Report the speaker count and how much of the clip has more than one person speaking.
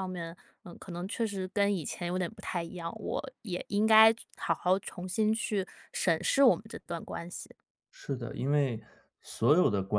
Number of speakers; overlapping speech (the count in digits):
2, no overlap